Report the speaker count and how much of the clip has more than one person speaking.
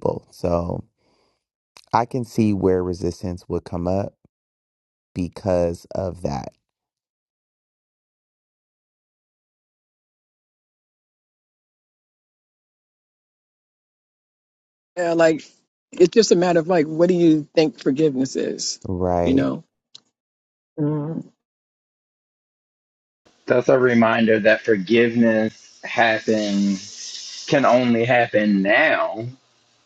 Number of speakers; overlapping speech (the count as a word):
three, about 1%